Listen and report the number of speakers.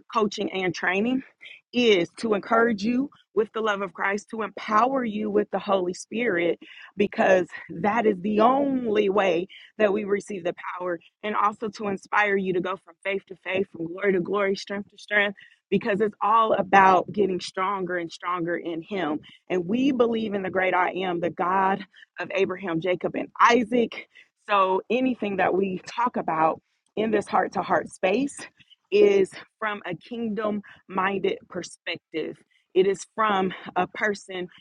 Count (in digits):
1